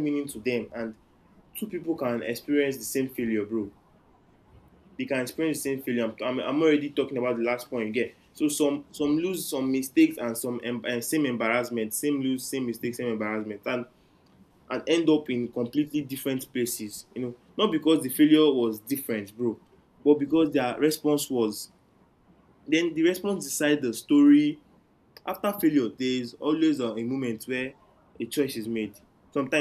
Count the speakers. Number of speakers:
1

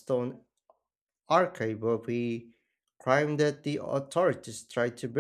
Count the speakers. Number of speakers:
1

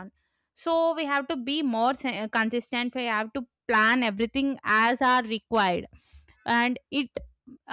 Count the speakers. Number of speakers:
1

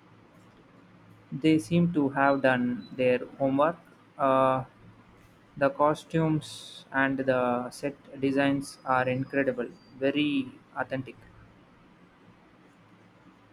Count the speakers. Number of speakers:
1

